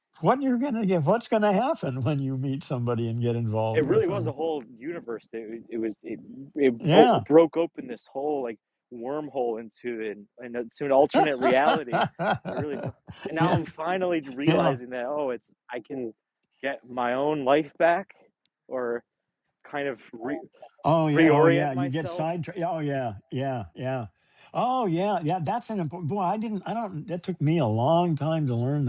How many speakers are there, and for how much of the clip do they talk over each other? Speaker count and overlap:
2, about 8%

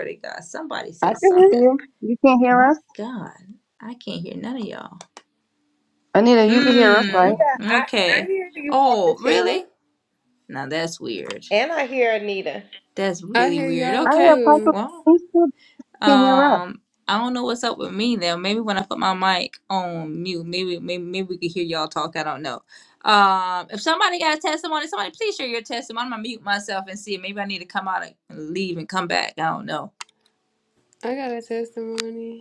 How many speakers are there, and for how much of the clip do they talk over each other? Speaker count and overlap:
4, about 16%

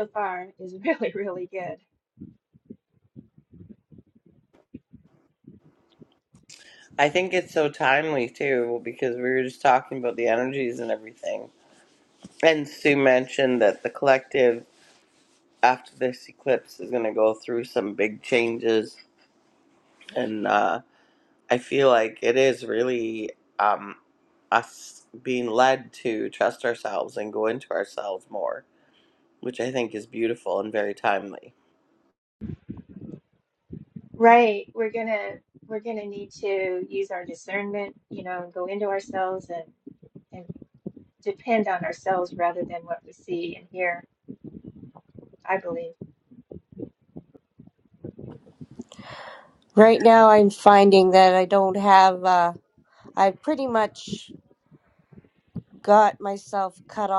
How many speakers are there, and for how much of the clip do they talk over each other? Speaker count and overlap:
3, no overlap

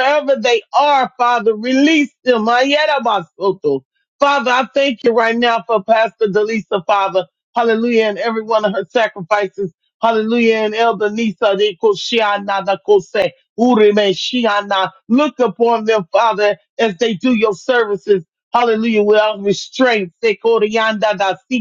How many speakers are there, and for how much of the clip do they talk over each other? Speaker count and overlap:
1, no overlap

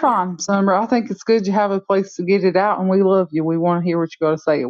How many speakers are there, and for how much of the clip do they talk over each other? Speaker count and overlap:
1, no overlap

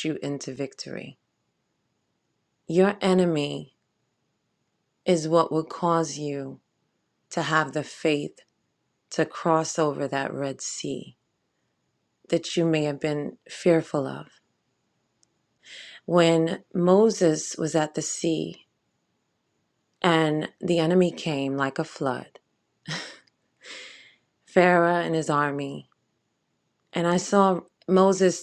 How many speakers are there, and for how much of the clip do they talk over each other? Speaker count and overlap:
1, no overlap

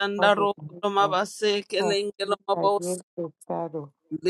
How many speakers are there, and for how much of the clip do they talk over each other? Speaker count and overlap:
2, about 45%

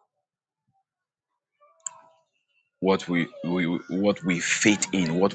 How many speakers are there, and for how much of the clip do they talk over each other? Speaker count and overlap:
1, no overlap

